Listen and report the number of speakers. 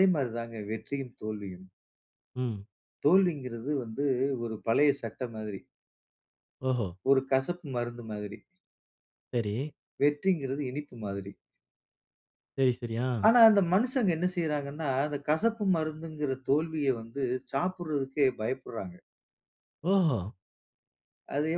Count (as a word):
two